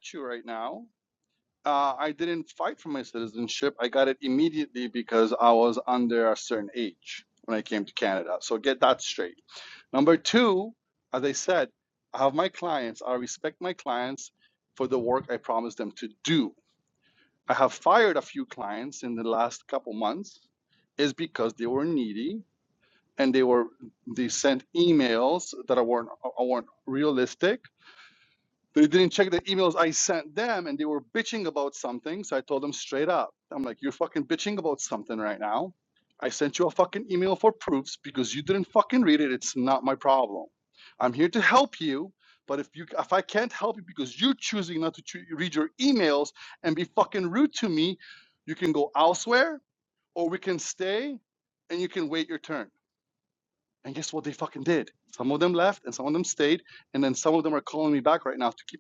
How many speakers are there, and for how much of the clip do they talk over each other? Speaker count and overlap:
1, no overlap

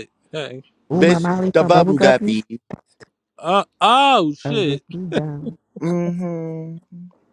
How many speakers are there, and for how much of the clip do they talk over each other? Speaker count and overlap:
3, about 20%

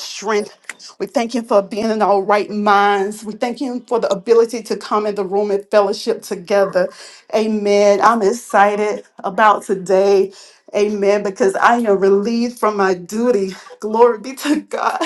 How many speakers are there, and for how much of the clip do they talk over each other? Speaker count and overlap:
1, no overlap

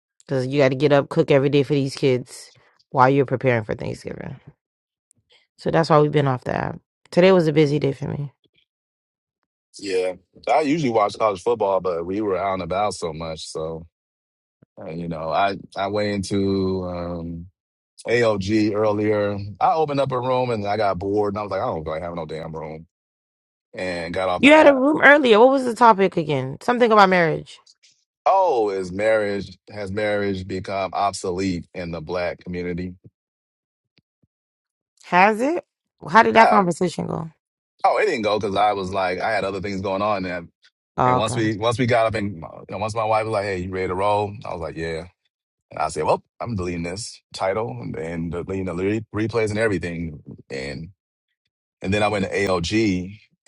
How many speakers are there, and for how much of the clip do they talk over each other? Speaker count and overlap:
2, about 2%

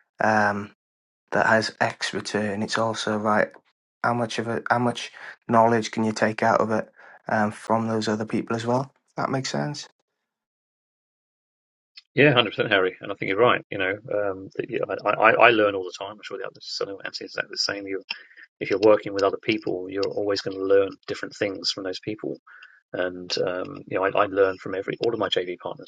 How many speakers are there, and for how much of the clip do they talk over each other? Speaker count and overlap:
2, no overlap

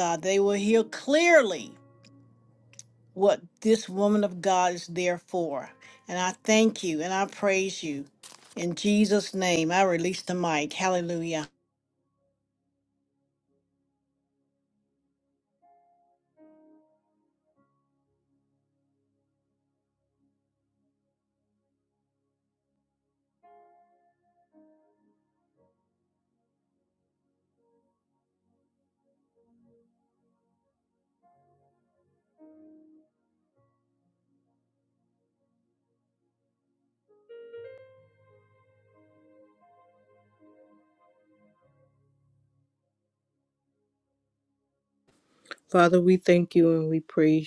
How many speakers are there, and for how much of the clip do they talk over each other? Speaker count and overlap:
2, no overlap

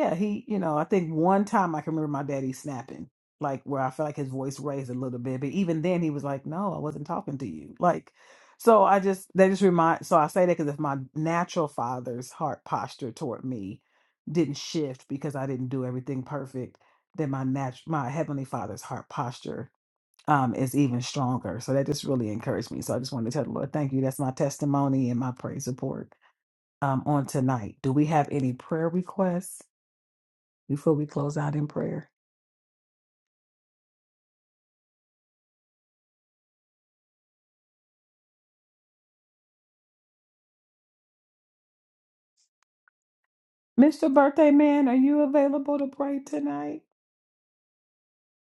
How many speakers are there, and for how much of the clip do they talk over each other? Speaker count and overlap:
1, no overlap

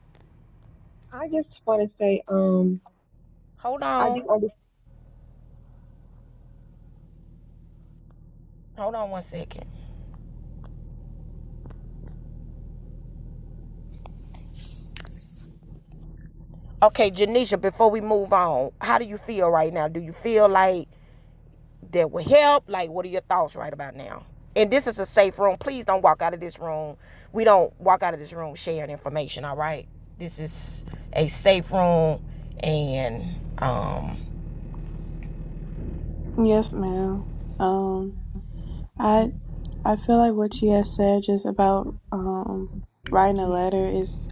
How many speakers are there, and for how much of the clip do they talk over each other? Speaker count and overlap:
3, about 1%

